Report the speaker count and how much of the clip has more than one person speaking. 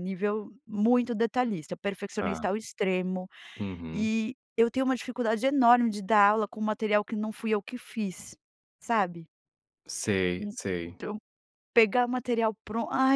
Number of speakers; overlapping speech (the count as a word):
two, about 5%